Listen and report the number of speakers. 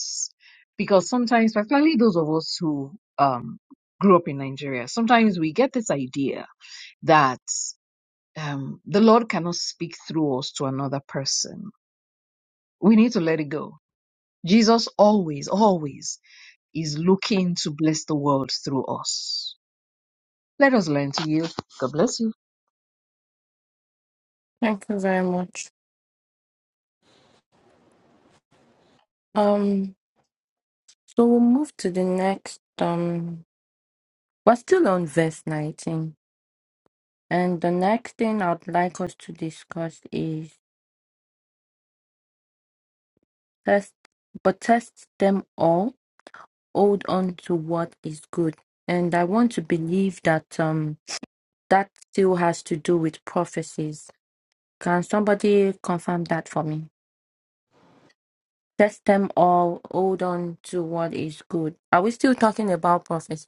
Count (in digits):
2